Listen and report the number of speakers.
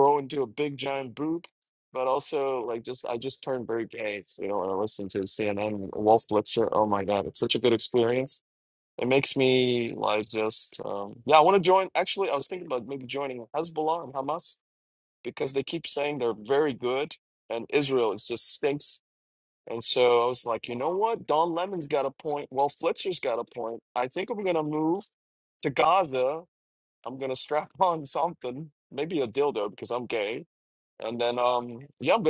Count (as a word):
one